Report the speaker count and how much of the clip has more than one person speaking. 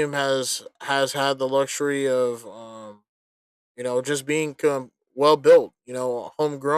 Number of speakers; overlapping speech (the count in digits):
1, no overlap